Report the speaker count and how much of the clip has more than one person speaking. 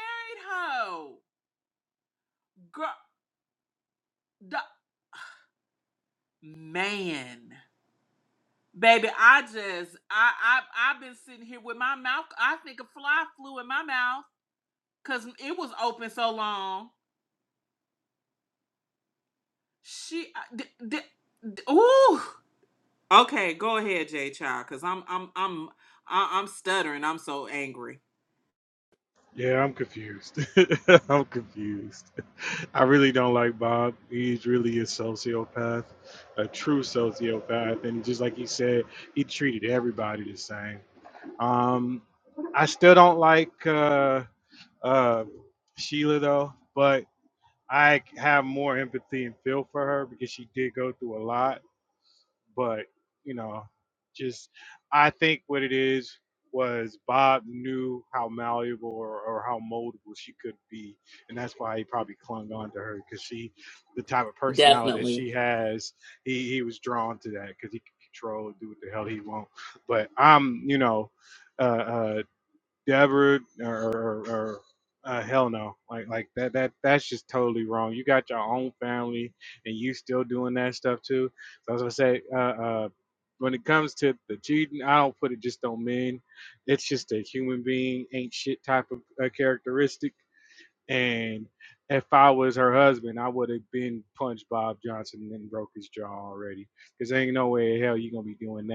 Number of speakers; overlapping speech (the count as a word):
two, about 1%